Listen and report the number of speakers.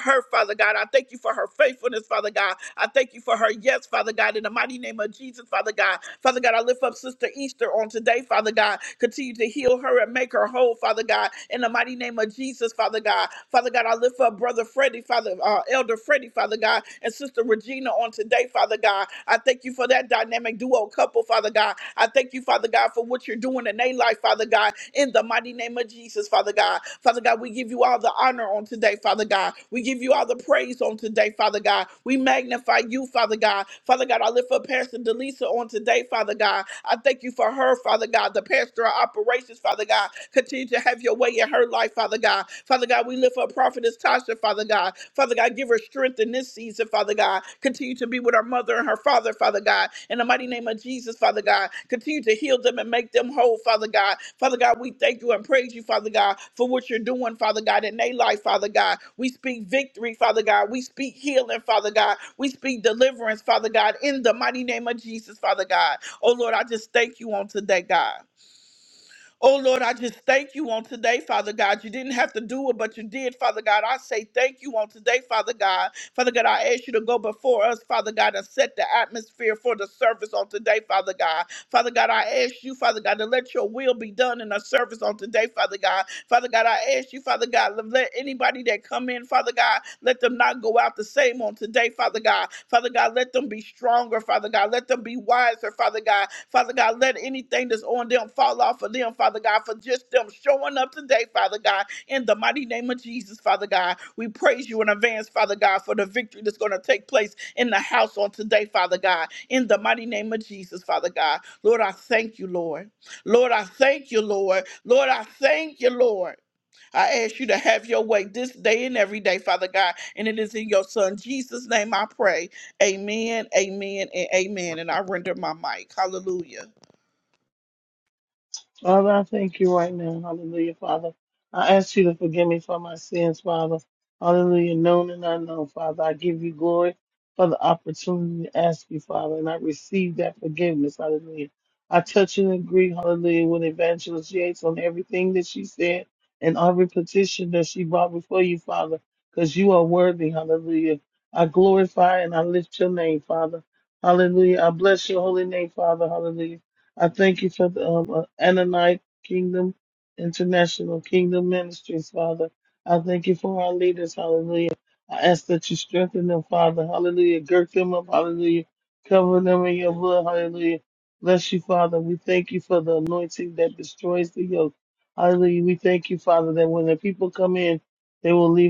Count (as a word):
two